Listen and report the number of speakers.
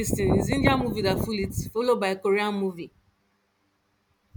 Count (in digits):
1